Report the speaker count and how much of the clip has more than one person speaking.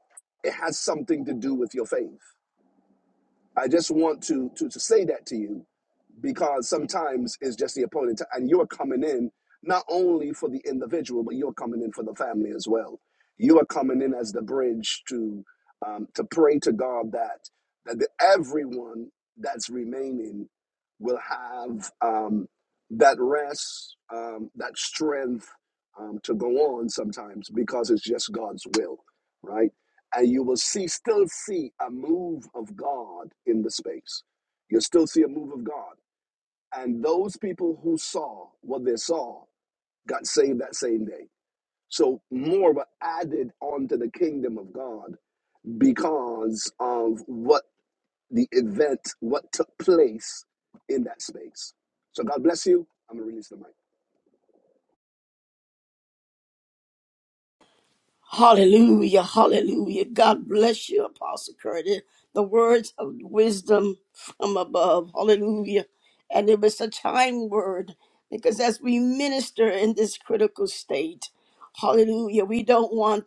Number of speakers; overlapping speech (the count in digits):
2, no overlap